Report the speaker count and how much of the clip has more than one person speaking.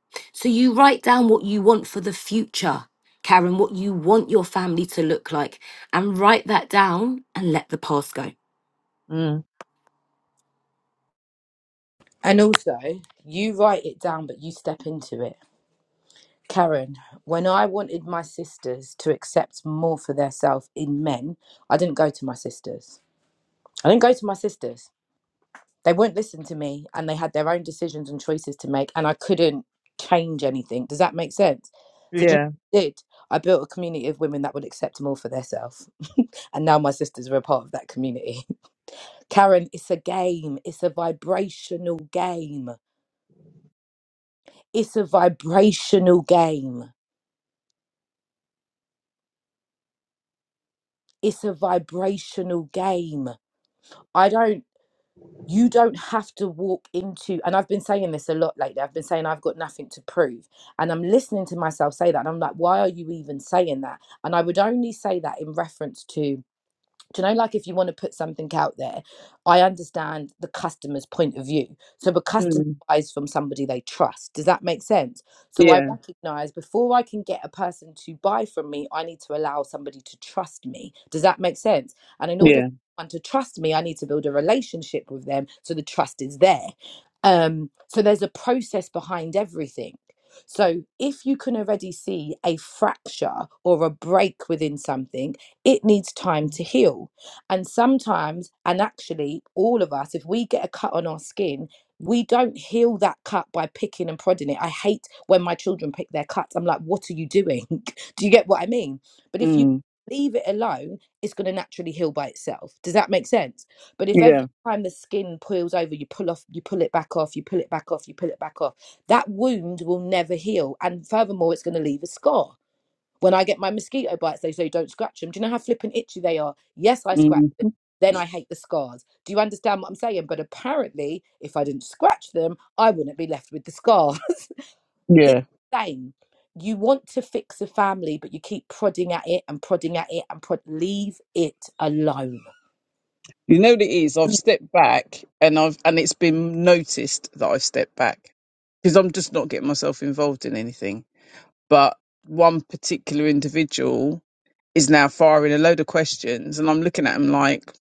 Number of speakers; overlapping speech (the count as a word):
three, about 1%